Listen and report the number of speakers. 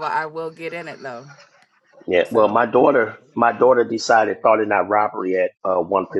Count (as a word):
two